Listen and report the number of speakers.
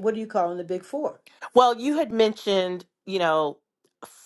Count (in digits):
2